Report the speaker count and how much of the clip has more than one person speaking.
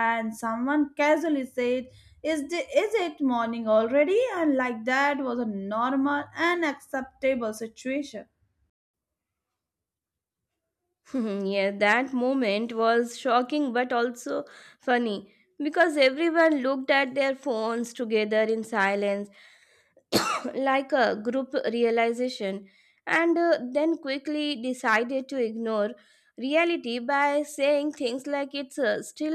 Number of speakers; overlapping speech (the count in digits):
2, no overlap